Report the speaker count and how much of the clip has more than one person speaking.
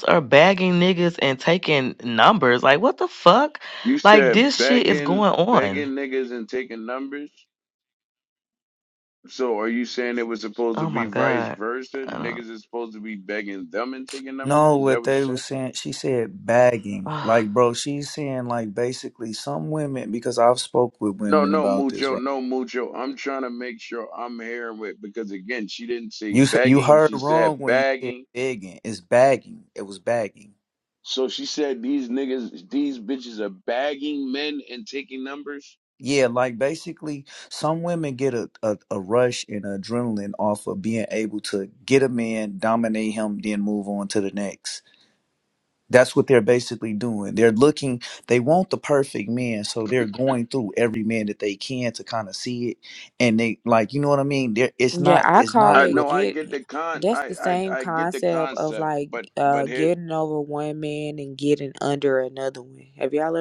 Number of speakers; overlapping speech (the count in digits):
4, about 18%